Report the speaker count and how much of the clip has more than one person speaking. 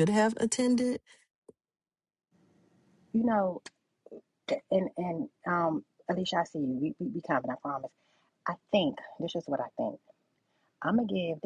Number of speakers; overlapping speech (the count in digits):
2, no overlap